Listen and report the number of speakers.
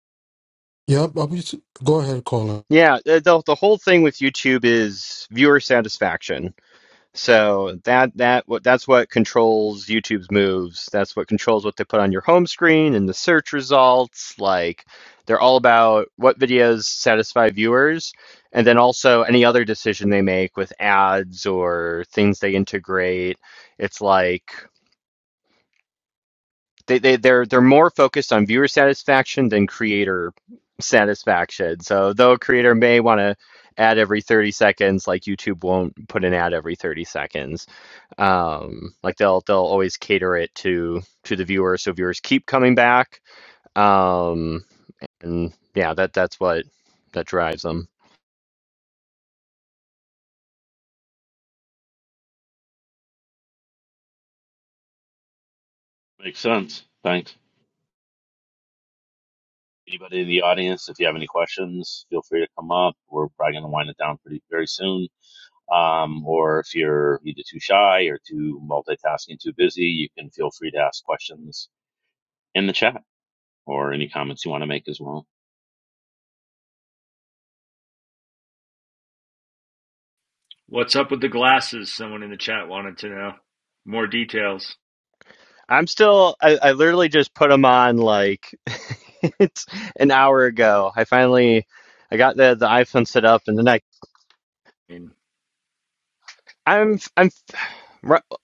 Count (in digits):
4